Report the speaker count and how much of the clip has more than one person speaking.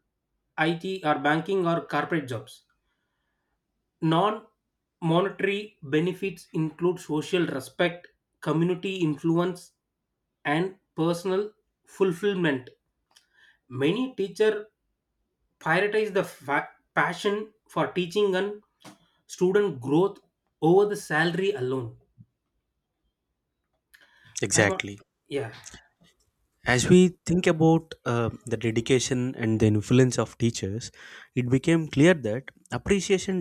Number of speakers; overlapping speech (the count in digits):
2, about 1%